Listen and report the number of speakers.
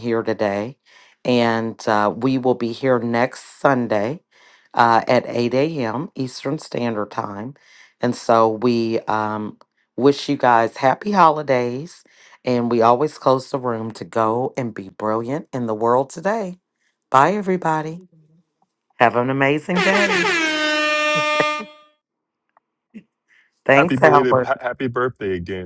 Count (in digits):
2